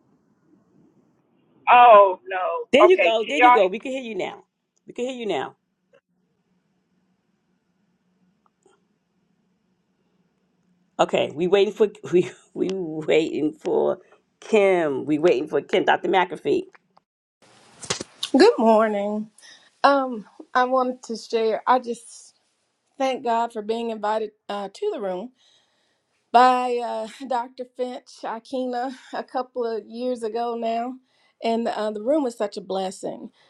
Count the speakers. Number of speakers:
three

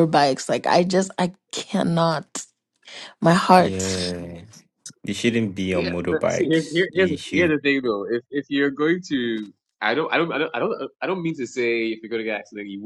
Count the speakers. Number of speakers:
three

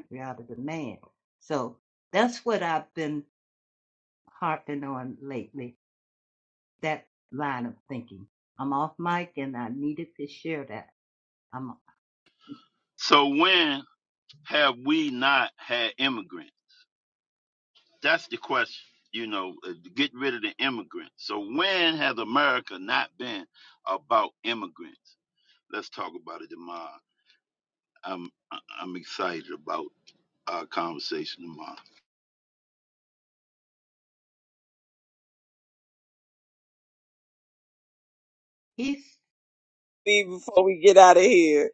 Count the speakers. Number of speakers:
three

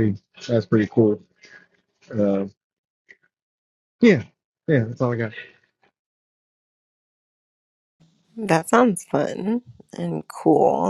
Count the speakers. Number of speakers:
two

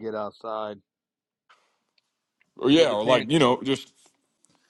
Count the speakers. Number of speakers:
two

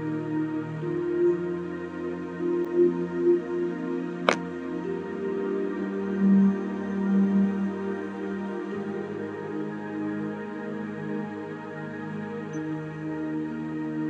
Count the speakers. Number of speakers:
zero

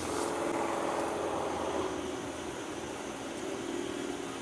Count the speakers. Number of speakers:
zero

